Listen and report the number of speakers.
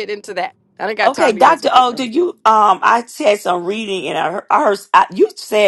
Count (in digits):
2